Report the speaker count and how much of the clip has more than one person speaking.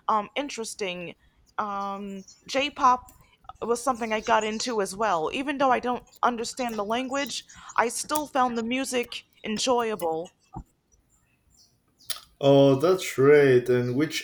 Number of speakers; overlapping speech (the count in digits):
2, no overlap